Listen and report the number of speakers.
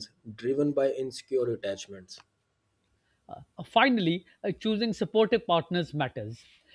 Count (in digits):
2